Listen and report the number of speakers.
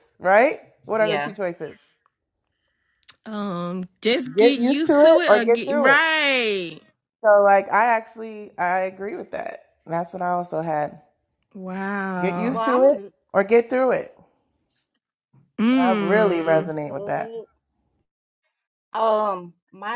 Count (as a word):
three